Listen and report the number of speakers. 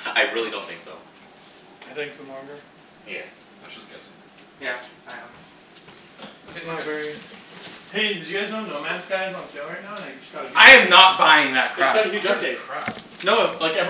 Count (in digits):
4